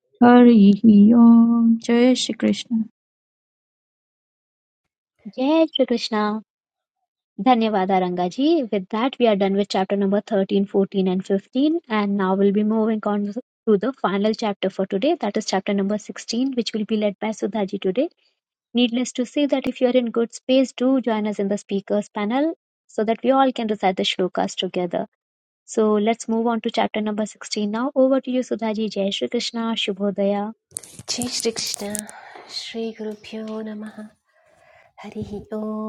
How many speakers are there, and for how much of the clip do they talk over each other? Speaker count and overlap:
three, no overlap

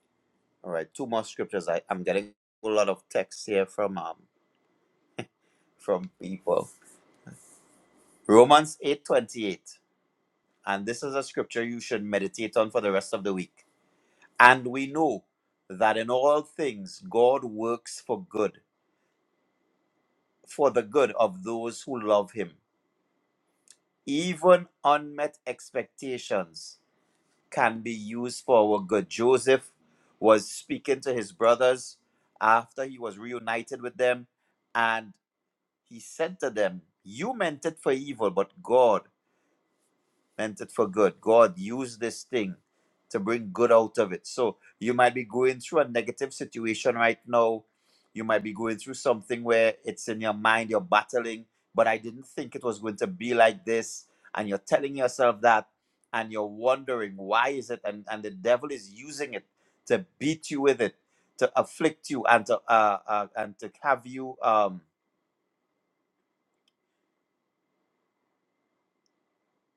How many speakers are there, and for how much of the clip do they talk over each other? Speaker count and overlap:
one, no overlap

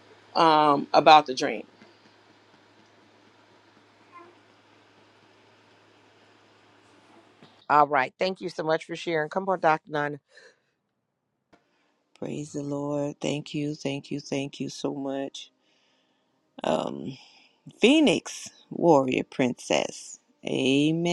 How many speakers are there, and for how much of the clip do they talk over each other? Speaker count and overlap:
three, no overlap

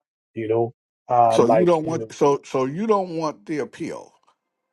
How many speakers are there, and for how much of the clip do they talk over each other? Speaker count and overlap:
two, about 17%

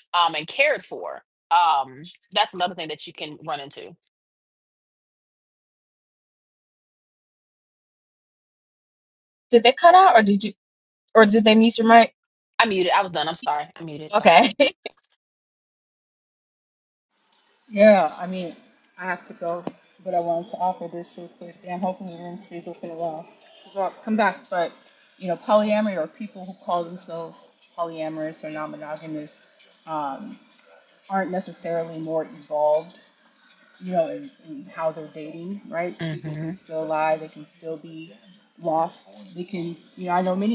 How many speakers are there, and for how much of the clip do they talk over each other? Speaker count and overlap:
three, about 2%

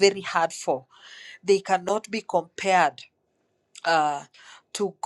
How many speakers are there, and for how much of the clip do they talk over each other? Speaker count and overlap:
one, no overlap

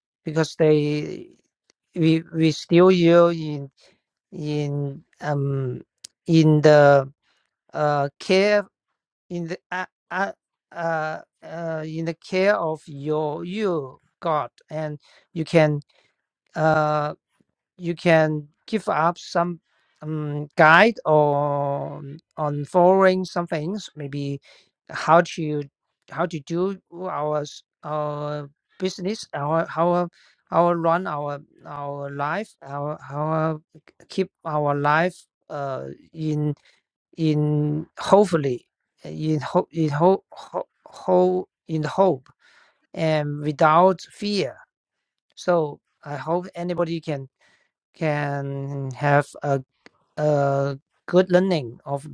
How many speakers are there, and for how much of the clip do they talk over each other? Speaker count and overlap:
one, no overlap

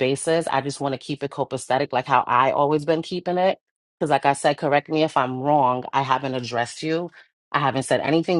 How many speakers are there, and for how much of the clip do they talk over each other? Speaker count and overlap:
one, no overlap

